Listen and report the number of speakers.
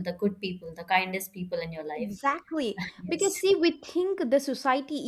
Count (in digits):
2